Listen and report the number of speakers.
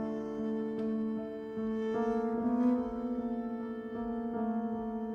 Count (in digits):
0